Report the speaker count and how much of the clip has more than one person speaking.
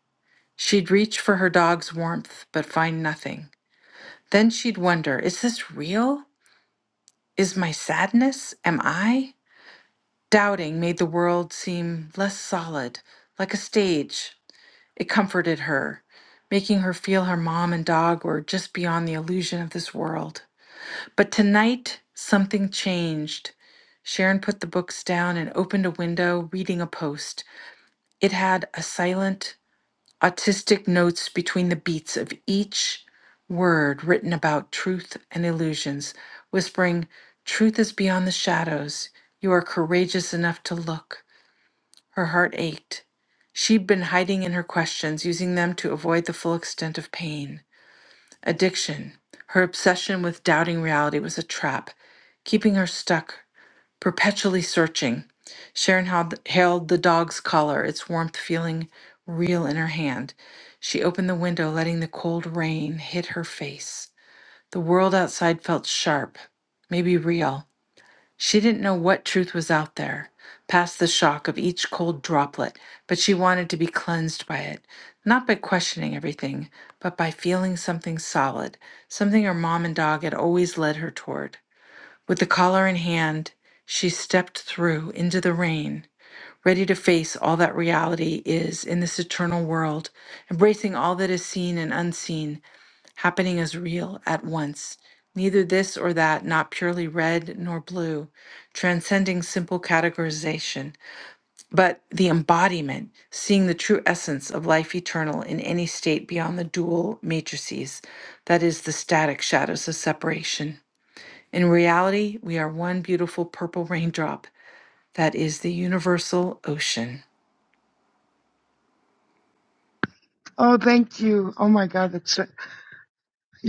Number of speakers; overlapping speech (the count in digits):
2, no overlap